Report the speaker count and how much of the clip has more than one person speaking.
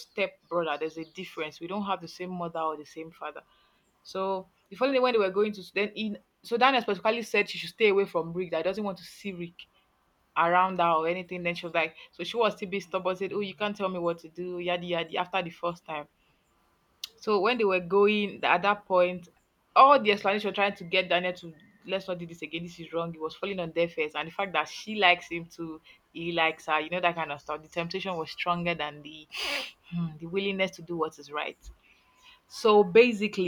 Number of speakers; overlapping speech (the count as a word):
one, no overlap